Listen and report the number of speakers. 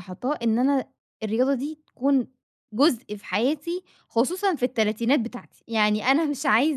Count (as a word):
one